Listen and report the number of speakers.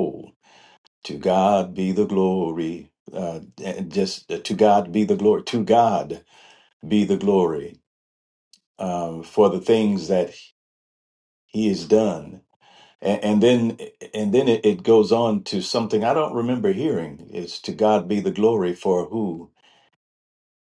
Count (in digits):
1